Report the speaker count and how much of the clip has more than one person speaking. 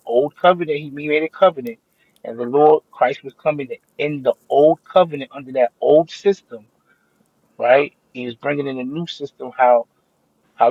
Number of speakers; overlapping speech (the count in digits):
1, no overlap